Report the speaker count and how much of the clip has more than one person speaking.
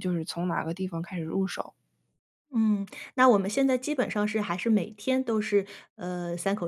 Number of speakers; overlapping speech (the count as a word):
two, no overlap